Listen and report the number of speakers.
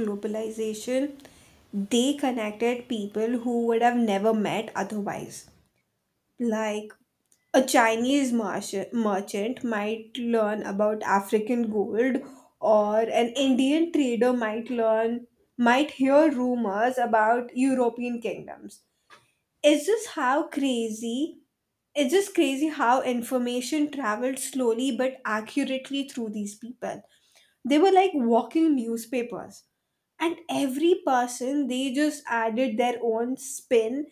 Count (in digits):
1